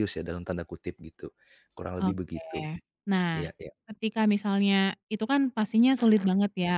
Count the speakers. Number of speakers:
two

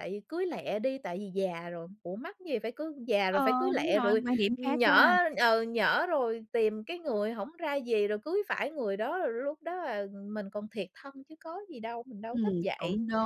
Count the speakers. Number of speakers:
two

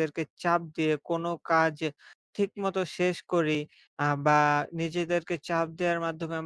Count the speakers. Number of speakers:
one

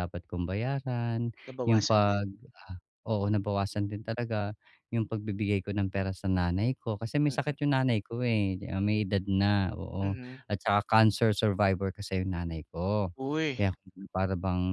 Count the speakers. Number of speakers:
two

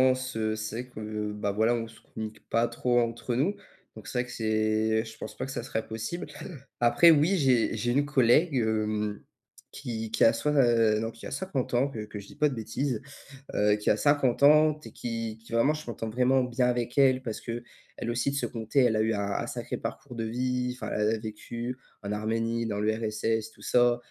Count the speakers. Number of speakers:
one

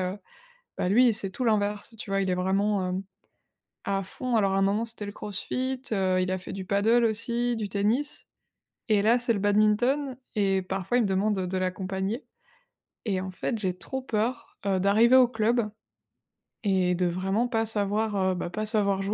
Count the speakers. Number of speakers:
one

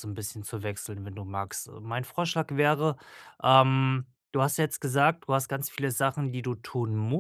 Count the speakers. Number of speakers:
one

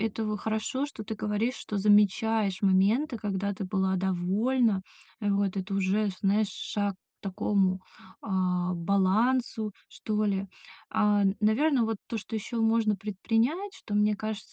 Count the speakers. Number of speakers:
one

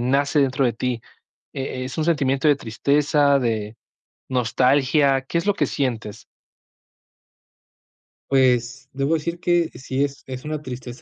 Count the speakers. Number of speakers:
two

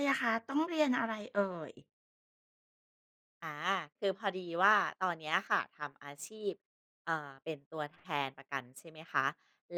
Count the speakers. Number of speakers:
two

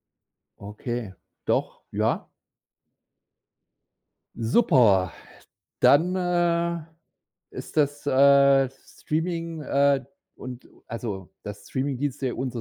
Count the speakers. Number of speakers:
one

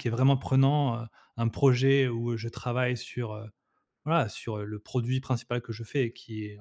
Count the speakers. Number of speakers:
one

